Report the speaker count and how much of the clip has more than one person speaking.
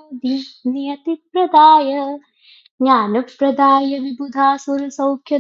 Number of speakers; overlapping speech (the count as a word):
one, no overlap